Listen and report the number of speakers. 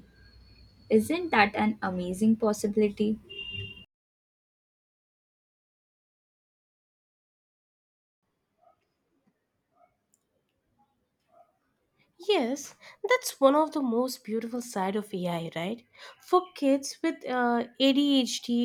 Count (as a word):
two